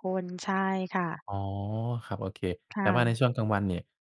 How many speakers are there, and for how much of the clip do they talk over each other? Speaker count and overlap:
2, about 6%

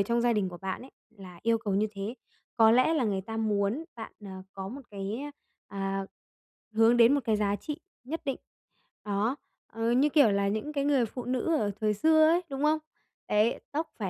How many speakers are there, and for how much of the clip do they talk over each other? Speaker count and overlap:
1, no overlap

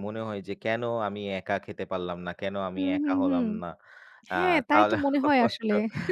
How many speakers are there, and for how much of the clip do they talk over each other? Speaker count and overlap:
2, about 30%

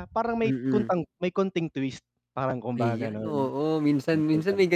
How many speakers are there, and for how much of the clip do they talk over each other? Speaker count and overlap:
2, about 35%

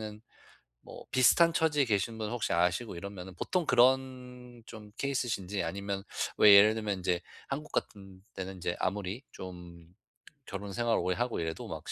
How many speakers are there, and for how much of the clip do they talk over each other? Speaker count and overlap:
1, no overlap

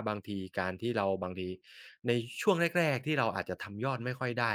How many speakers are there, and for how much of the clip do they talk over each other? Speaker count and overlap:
1, no overlap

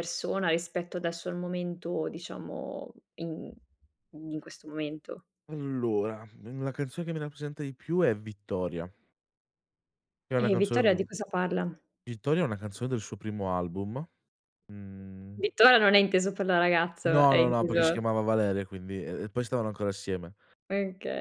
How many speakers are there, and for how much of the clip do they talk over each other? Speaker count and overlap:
2, about 7%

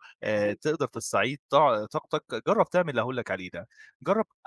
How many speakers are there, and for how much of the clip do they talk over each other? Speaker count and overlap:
1, no overlap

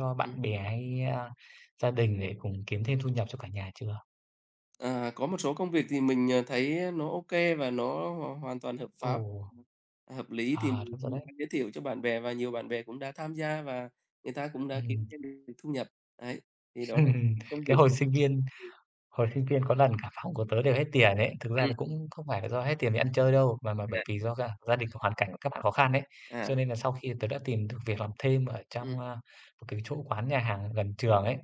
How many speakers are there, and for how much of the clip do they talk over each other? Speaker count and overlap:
2, about 7%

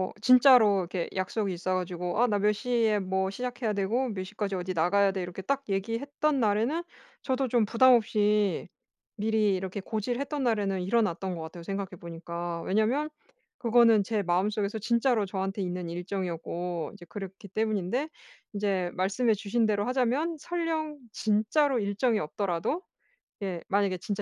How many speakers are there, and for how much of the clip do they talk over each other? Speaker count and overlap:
1, no overlap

